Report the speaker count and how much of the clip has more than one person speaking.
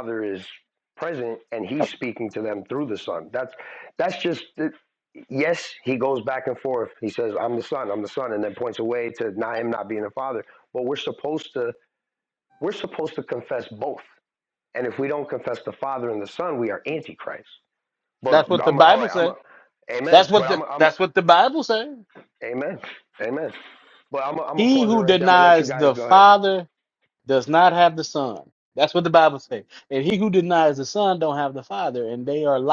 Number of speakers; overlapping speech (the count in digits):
2, about 11%